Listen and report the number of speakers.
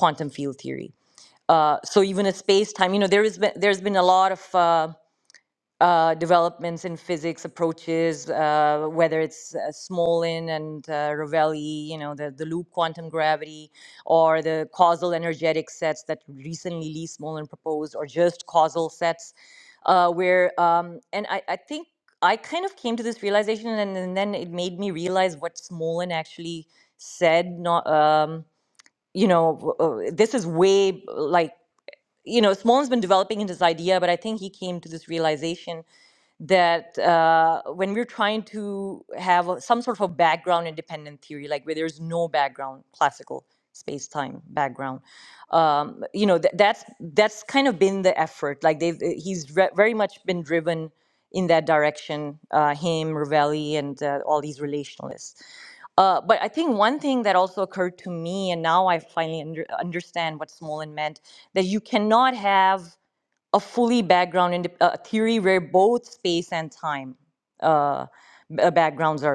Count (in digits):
1